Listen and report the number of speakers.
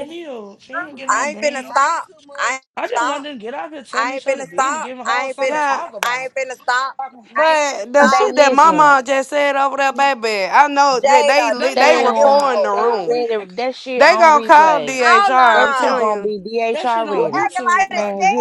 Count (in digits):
4